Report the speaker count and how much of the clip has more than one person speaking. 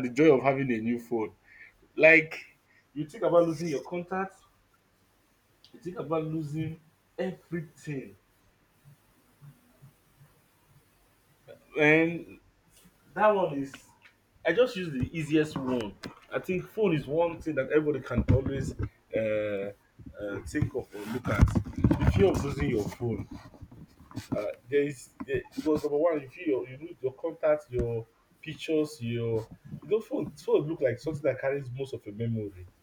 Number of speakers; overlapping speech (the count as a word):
one, no overlap